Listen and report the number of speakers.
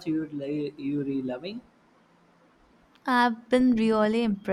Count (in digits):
2